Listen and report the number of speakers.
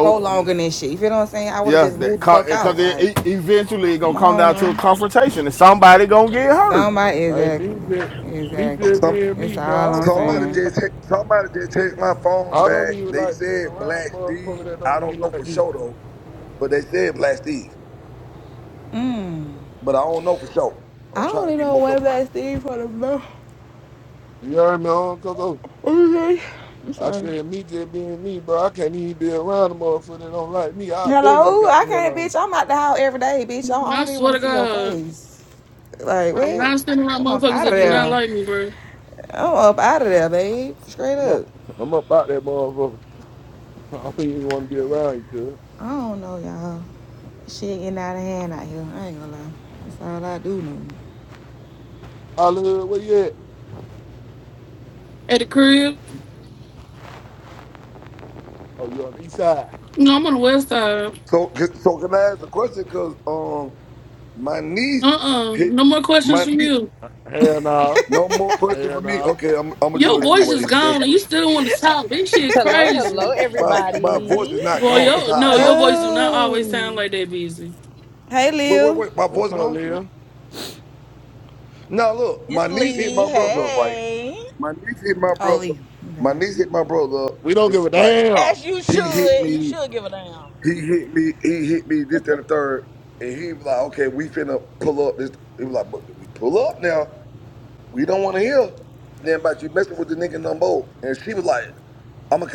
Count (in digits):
6